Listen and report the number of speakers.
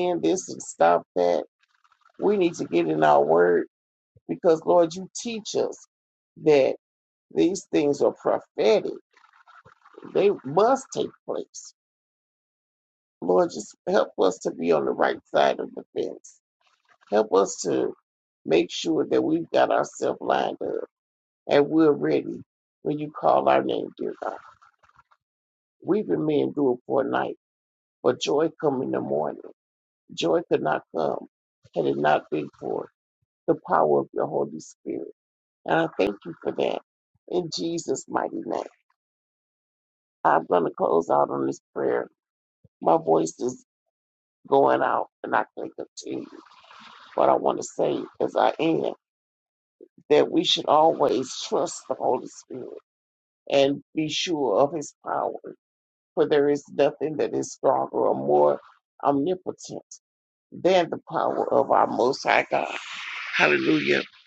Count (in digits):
1